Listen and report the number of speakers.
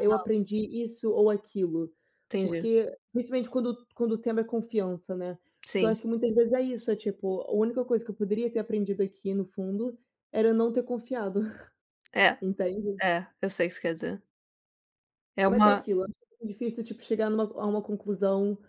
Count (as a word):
two